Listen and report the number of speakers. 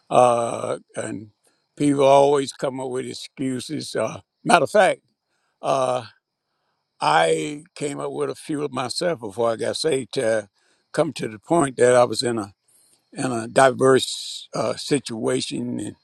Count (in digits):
1